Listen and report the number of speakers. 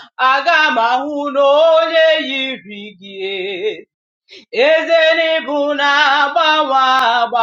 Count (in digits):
1